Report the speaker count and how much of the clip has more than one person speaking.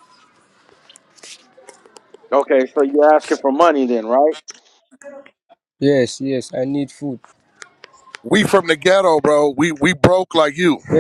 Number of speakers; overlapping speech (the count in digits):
3, no overlap